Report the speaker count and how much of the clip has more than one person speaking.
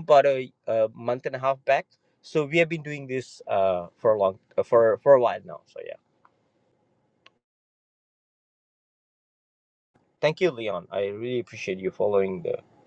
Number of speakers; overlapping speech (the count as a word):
one, no overlap